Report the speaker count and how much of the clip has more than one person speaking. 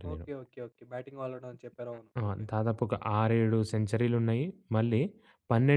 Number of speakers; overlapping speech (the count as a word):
two, about 8%